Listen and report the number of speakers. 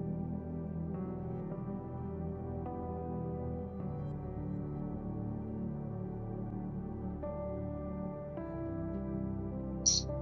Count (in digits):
0